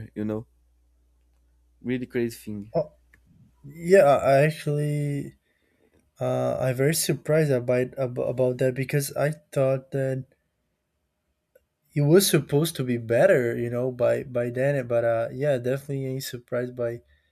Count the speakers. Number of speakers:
two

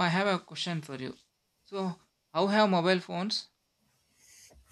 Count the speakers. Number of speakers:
one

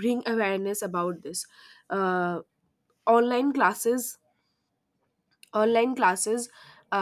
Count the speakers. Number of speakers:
one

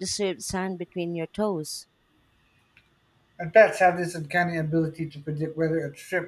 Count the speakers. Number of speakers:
two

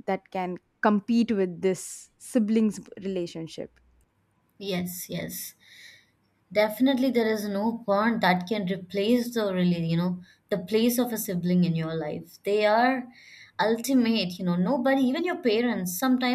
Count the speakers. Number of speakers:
two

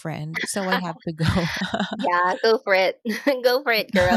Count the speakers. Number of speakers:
two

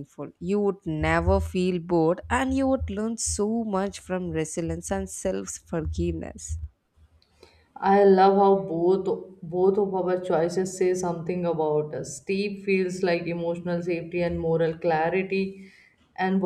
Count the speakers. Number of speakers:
two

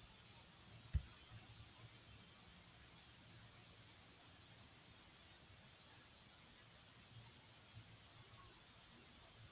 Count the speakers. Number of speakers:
zero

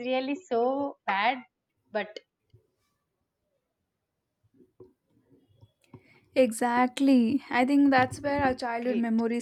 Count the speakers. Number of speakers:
two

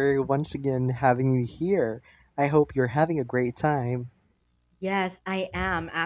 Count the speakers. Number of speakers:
two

